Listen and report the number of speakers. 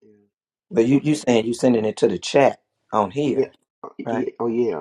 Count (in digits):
2